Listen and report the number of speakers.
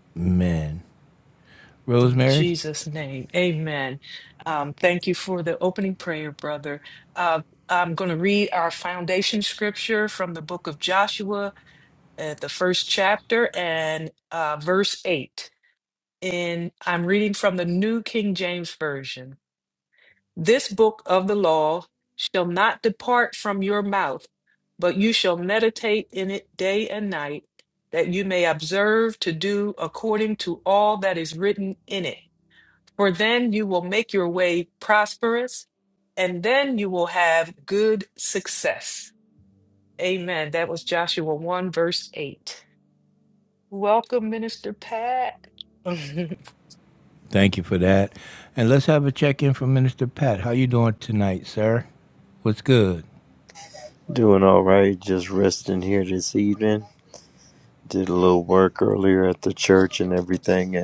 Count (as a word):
three